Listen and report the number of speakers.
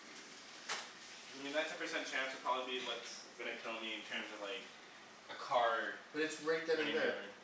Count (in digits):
2